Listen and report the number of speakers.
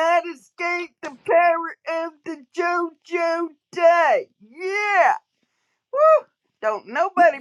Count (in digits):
1